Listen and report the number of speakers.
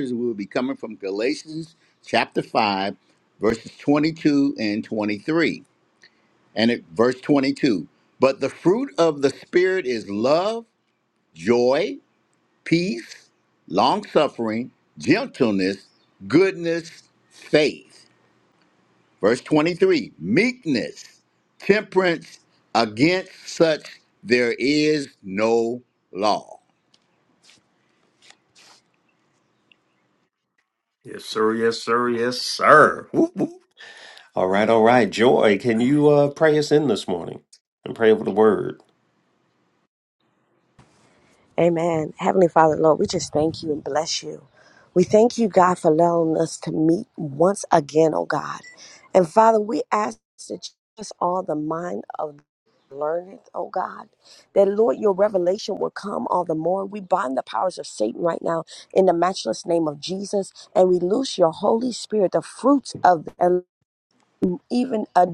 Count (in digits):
3